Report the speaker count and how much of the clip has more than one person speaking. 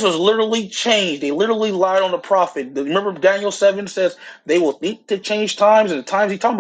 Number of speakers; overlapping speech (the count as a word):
one, no overlap